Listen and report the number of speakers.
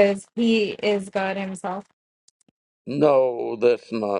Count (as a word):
two